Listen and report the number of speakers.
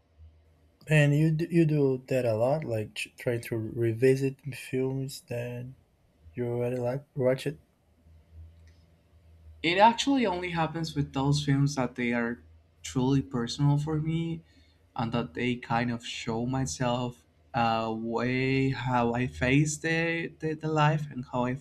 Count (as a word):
two